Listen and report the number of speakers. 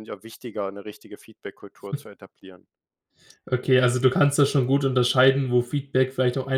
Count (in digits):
2